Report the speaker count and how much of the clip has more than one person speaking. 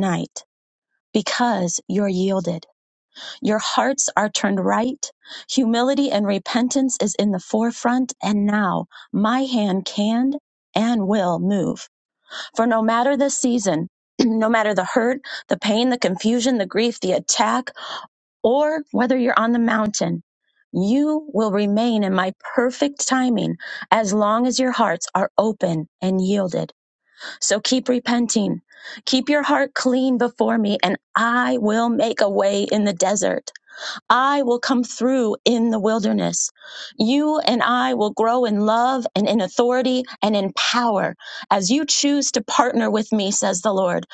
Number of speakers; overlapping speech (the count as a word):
one, no overlap